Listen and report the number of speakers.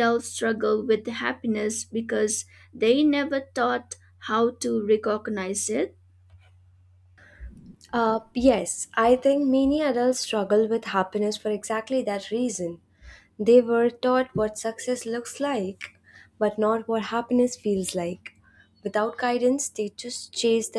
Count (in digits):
2